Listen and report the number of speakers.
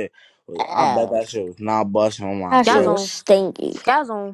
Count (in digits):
3